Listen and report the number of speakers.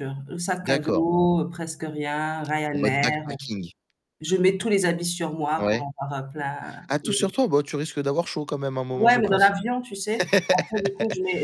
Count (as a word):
two